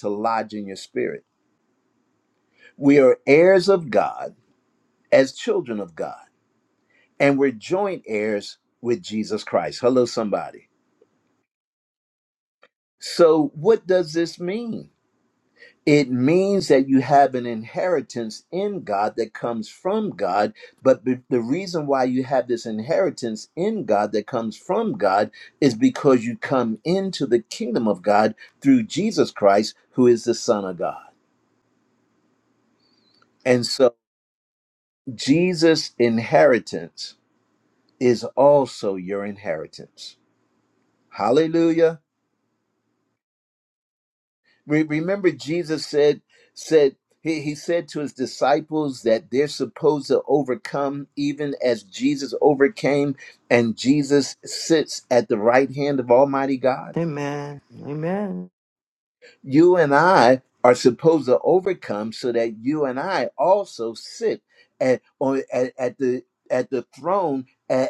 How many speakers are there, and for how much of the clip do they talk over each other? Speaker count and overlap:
2, no overlap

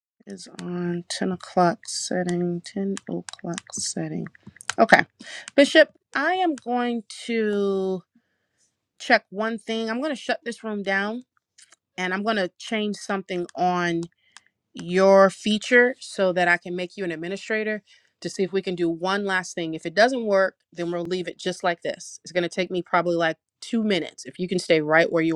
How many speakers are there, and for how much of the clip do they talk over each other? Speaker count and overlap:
1, no overlap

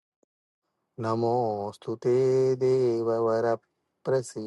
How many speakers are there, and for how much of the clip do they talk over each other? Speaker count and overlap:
1, no overlap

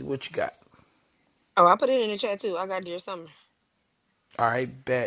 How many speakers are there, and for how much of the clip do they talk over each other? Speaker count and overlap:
2, no overlap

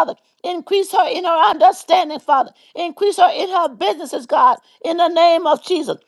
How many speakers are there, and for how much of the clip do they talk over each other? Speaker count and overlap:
1, no overlap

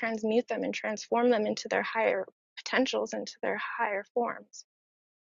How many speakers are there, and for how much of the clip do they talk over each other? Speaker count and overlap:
1, no overlap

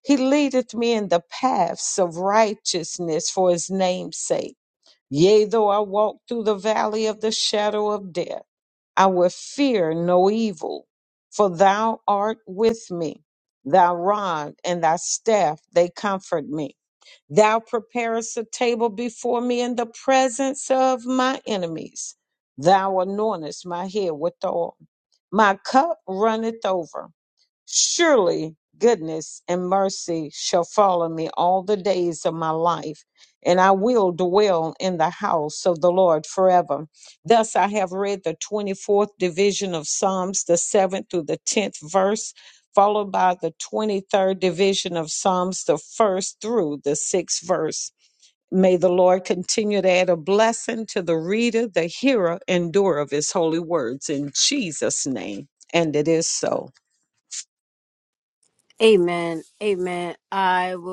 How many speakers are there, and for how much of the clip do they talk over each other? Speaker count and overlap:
2, no overlap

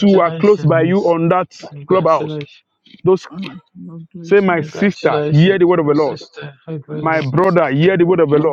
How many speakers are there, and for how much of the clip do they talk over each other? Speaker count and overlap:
3, about 48%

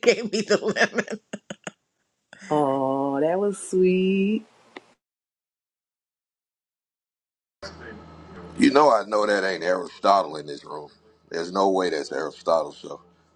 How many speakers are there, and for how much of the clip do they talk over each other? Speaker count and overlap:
3, no overlap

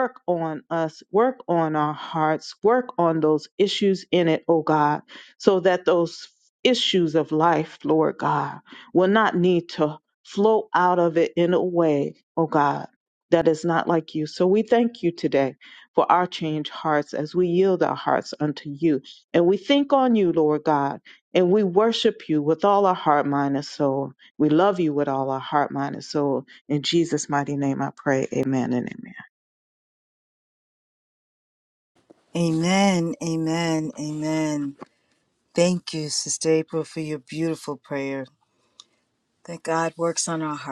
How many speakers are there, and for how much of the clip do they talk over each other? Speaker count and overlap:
2, no overlap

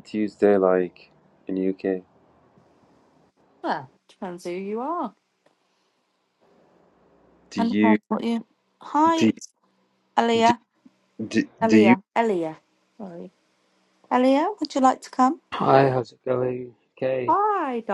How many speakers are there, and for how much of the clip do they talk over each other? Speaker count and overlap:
3, about 6%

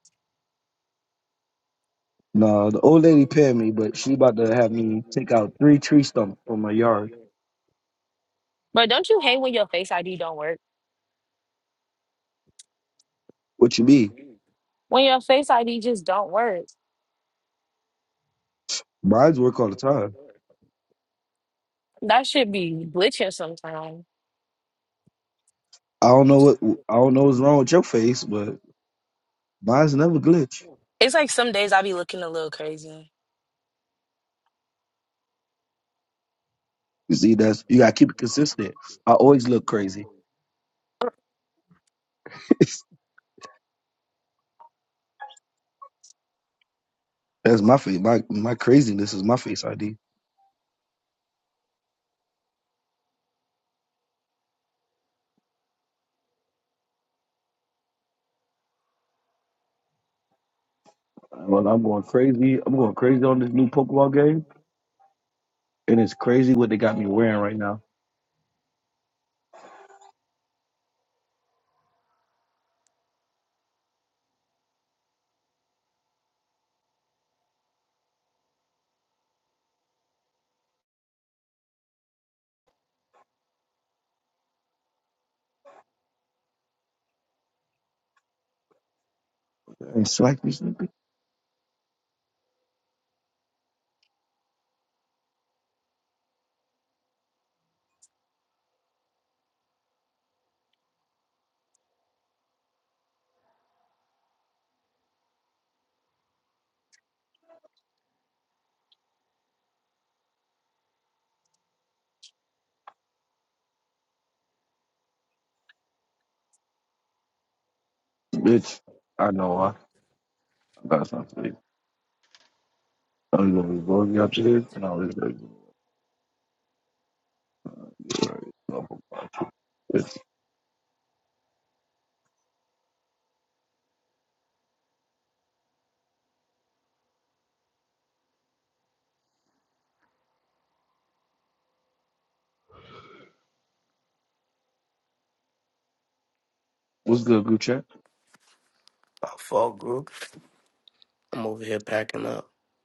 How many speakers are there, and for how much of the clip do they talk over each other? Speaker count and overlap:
3, no overlap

